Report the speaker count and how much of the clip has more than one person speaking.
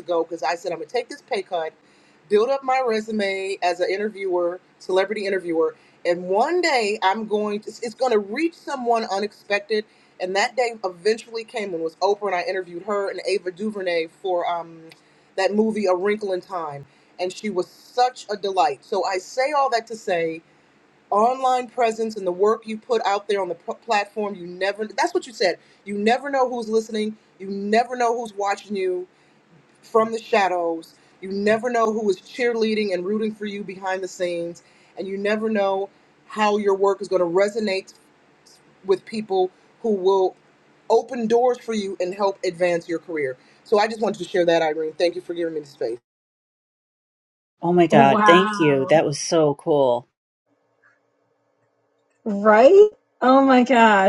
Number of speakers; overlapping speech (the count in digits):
3, about 2%